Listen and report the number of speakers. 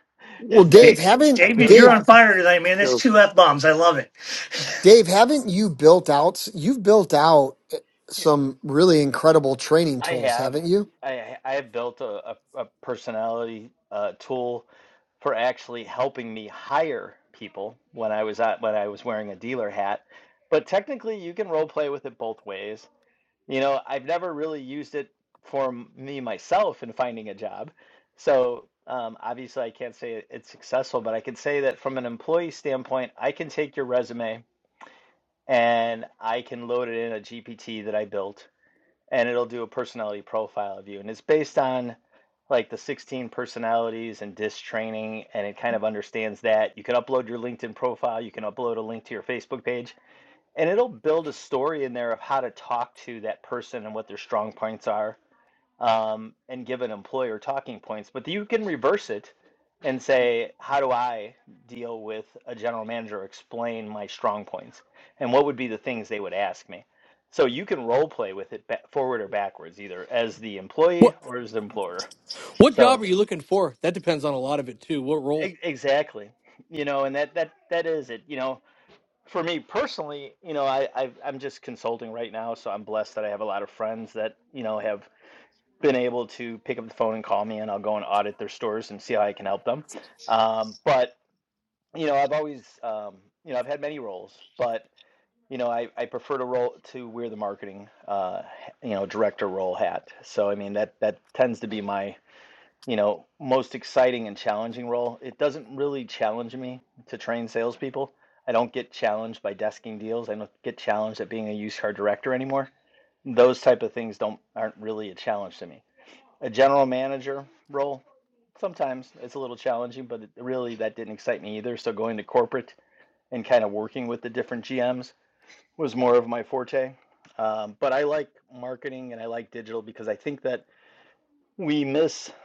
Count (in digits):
4